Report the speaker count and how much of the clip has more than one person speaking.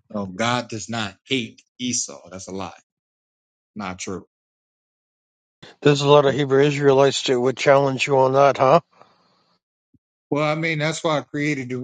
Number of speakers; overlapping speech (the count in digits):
2, no overlap